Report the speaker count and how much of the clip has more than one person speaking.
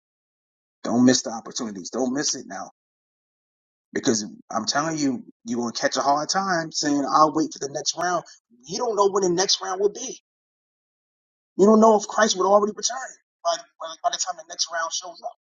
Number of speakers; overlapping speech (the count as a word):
one, no overlap